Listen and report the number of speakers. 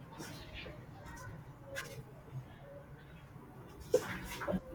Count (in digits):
0